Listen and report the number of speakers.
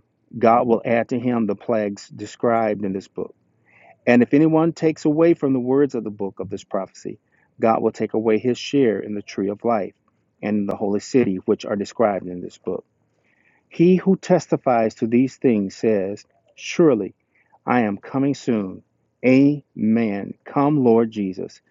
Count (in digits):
1